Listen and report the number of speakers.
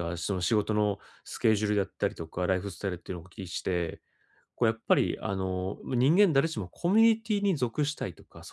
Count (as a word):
one